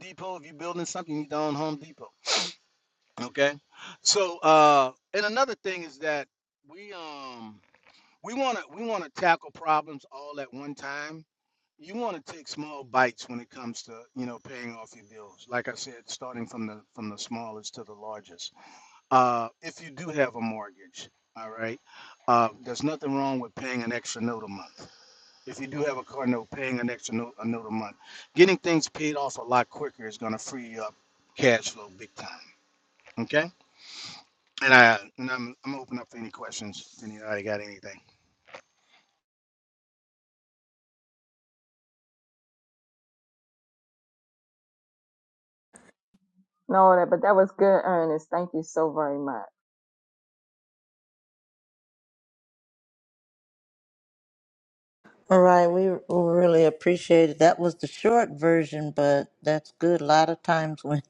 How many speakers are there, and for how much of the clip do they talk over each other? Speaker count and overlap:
3, no overlap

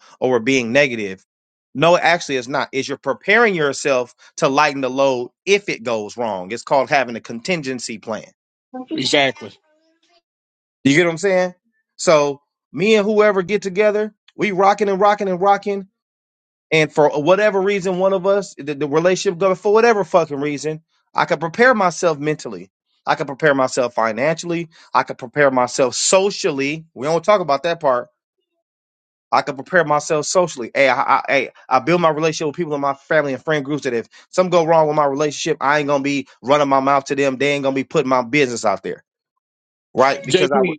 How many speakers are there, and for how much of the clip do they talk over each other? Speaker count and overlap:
2, about 2%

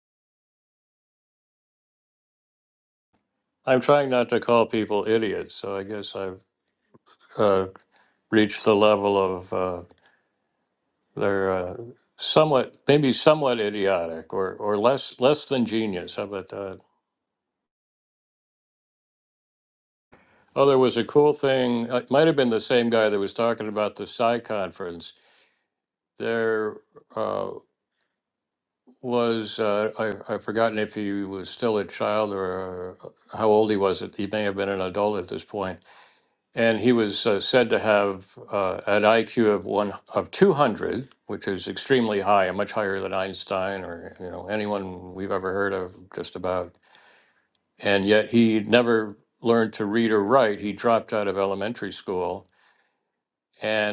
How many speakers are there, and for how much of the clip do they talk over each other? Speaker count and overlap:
1, no overlap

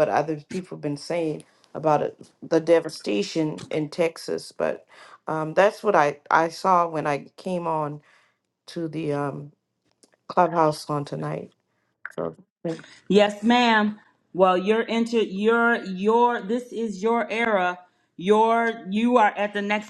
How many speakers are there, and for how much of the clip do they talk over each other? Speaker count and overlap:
2, no overlap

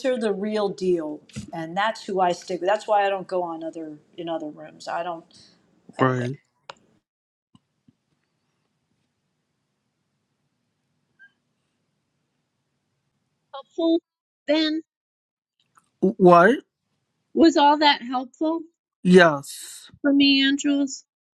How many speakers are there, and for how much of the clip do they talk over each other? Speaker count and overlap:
3, about 1%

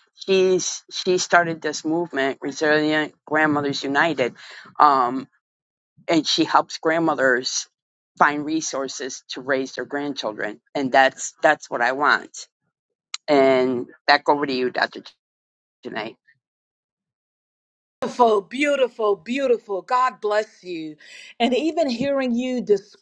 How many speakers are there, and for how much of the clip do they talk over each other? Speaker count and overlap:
2, no overlap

